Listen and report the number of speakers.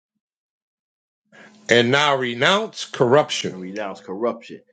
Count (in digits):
2